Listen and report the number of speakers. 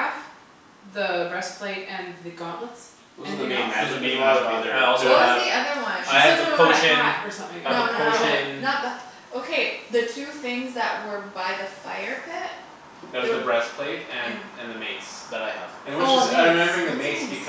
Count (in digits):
4